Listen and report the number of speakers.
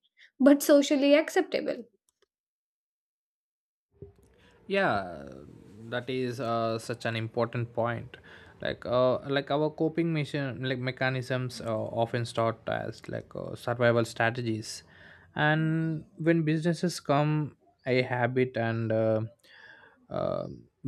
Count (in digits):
2